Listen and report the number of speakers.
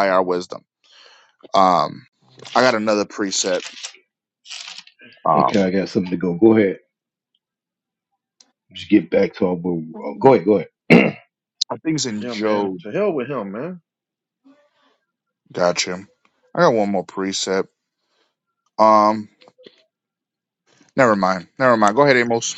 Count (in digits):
3